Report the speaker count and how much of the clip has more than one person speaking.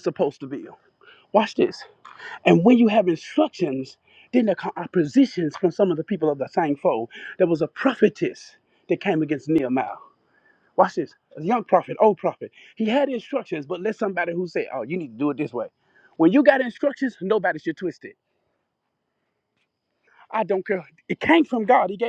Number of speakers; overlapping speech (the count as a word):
one, no overlap